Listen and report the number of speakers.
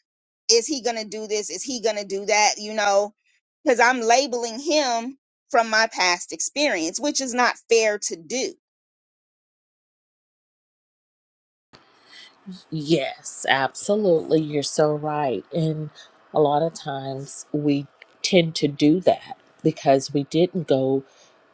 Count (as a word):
two